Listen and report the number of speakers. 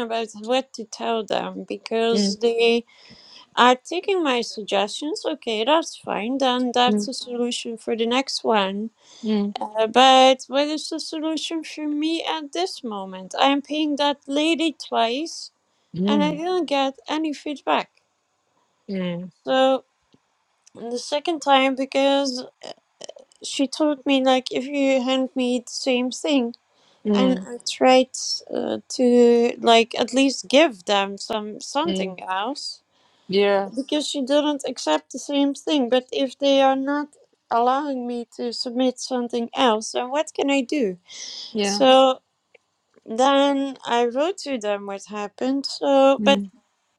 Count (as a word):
two